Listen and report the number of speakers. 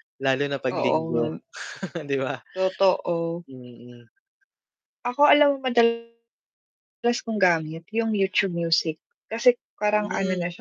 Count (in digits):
2